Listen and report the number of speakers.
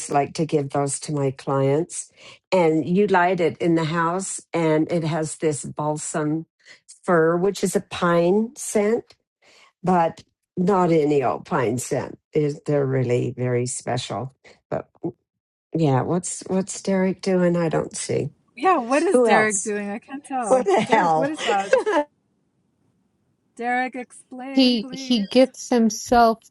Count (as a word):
three